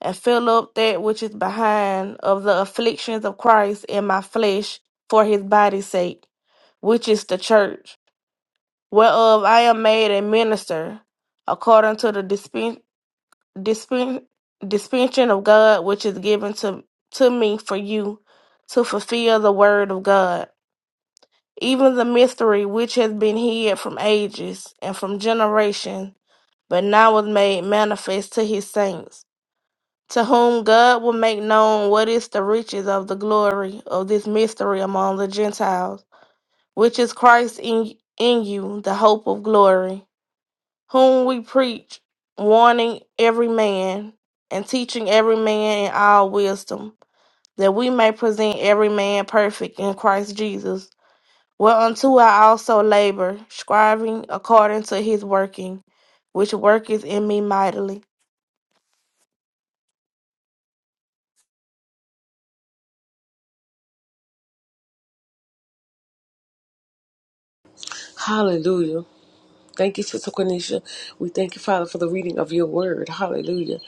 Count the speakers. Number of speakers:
two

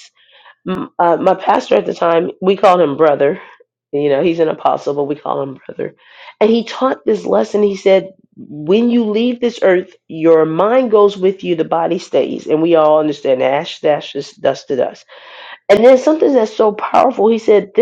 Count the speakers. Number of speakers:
one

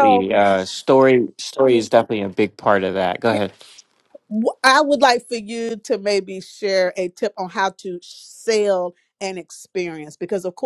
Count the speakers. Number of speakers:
two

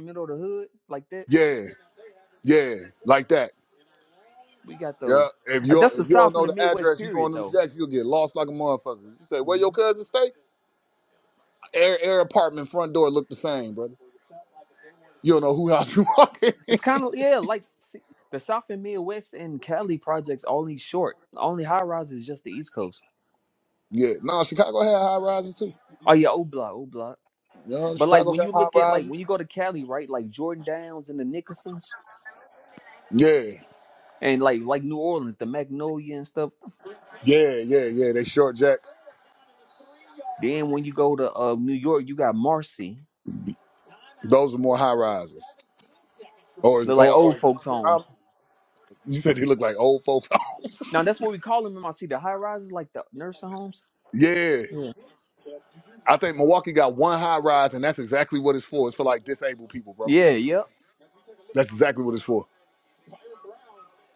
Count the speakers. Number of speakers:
two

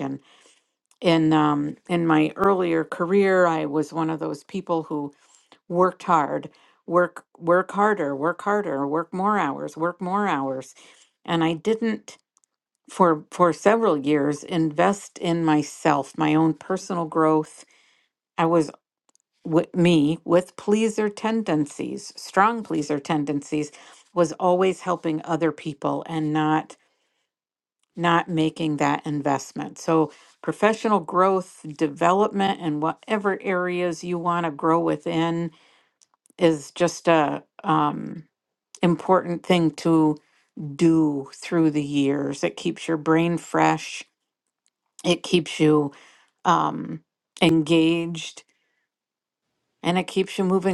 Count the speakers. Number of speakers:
one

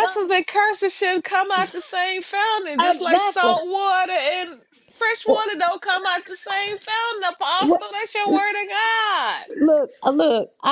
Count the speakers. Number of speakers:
two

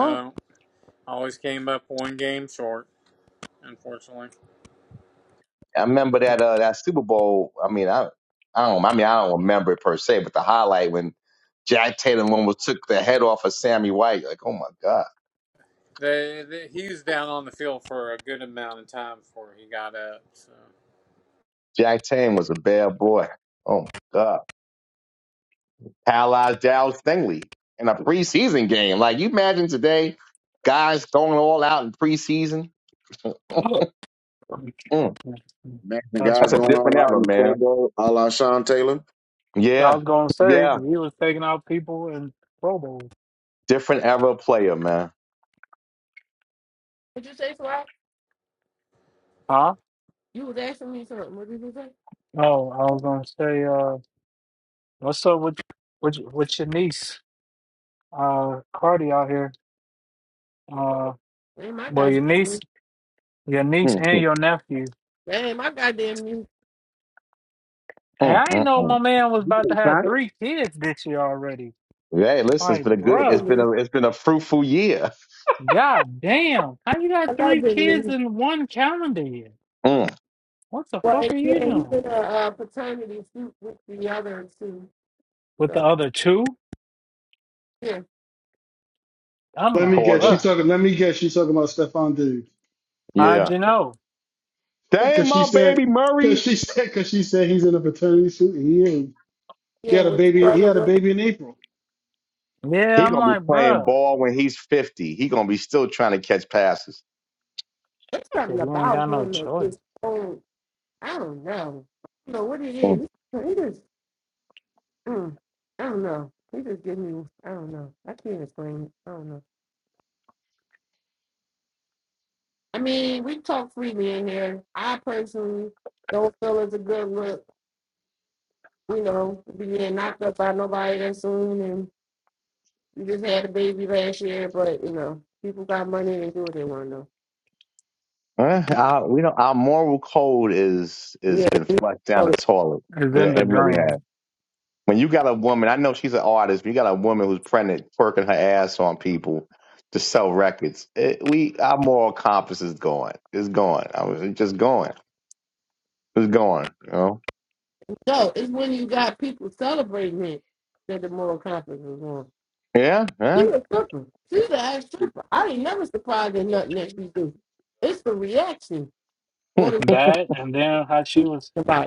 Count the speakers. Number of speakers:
six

